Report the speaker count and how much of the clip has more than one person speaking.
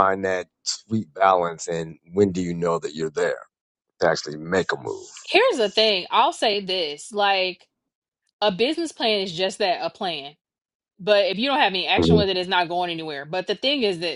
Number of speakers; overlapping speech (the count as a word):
two, no overlap